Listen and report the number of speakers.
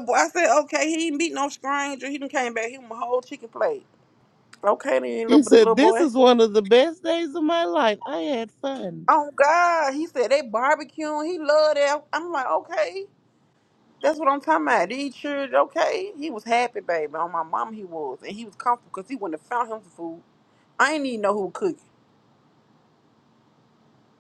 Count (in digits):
2